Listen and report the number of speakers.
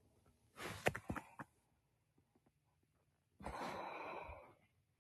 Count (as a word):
zero